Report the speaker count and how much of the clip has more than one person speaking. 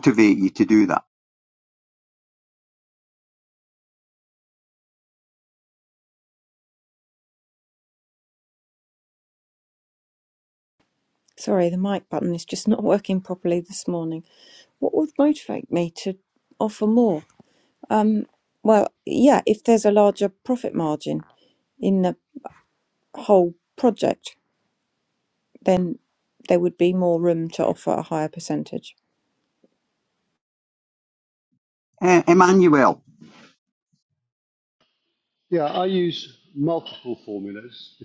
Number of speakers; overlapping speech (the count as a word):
three, no overlap